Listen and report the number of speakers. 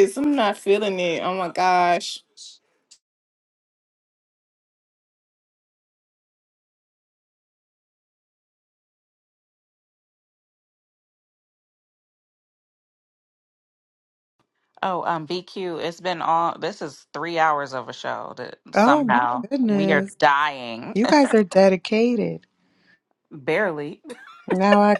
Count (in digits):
3